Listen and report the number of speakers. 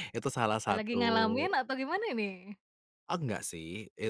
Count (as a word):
two